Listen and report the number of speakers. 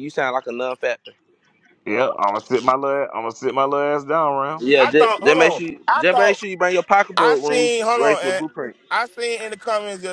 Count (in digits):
3